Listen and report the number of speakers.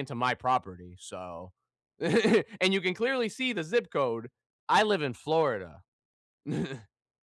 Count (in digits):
1